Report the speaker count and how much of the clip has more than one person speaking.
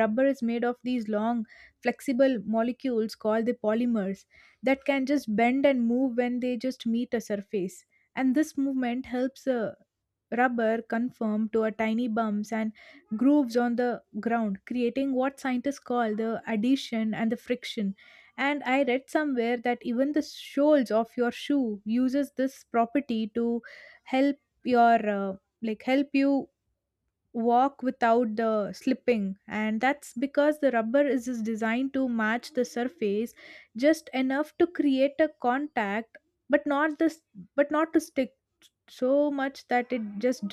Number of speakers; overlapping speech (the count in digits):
1, no overlap